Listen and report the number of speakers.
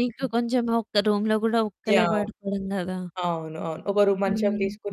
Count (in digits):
2